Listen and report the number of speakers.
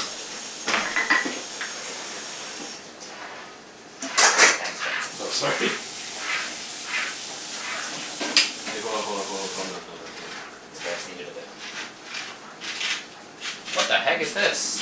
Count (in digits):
2